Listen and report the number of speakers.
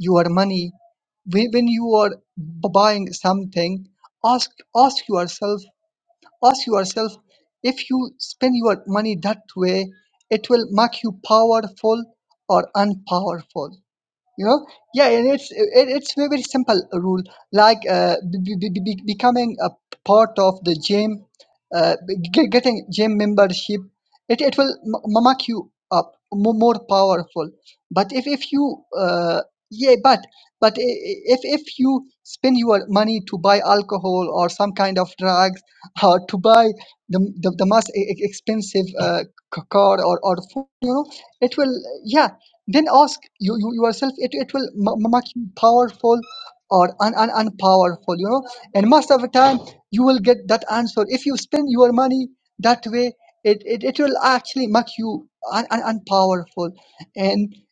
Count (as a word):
one